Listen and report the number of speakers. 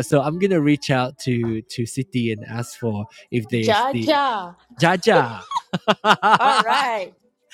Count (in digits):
2